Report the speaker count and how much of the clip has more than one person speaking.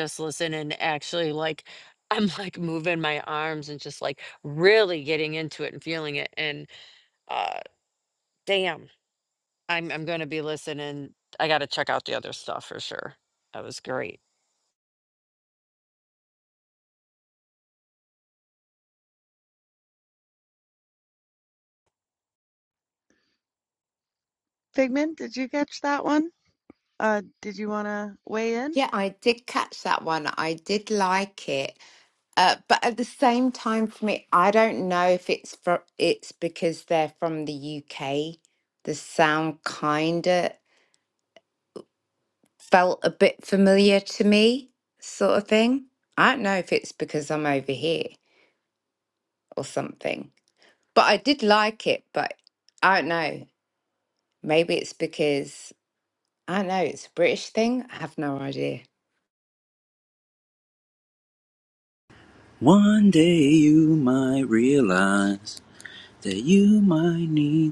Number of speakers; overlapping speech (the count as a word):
four, no overlap